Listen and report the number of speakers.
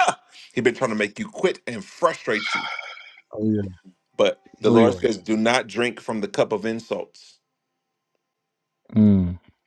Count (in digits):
2